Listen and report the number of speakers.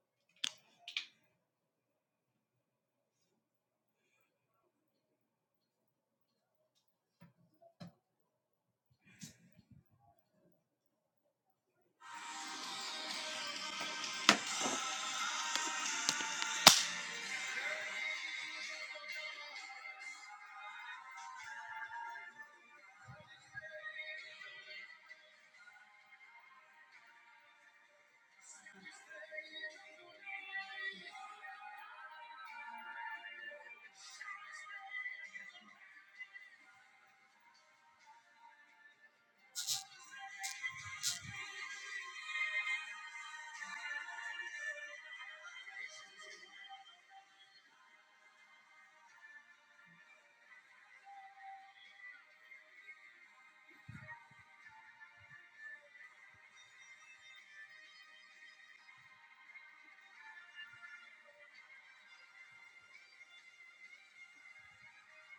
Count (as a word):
zero